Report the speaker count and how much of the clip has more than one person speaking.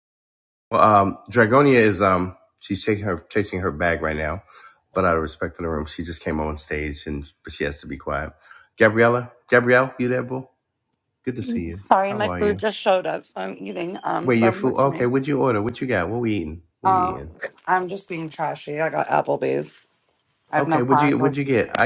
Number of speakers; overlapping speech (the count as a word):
two, about 11%